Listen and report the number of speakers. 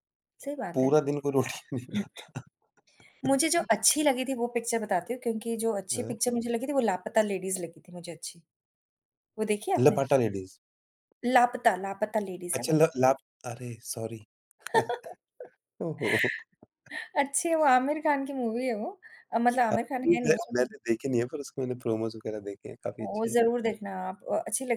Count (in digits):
2